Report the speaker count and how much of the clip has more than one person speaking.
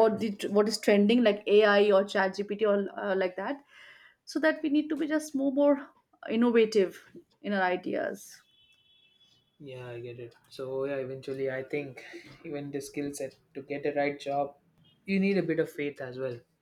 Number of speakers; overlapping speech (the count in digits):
2, no overlap